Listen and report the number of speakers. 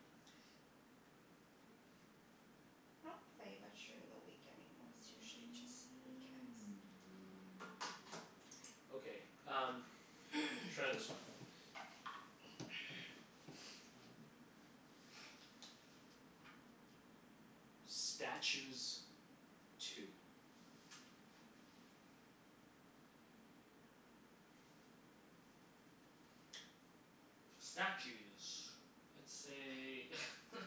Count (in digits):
3